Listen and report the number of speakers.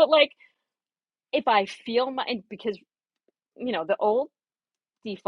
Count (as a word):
one